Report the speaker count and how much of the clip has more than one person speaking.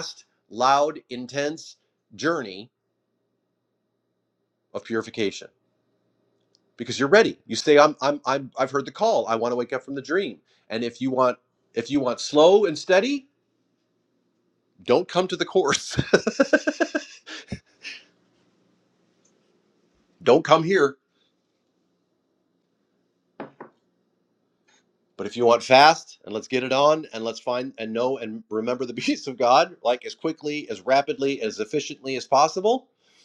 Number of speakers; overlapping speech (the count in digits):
1, no overlap